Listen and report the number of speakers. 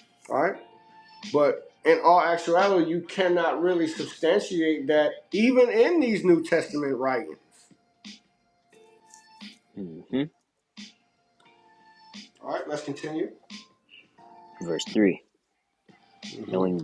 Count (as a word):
two